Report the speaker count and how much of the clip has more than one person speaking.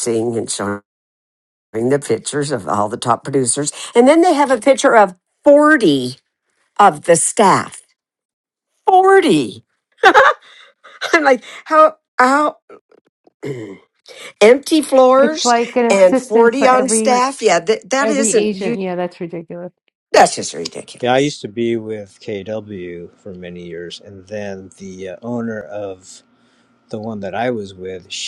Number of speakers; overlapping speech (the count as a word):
three, about 10%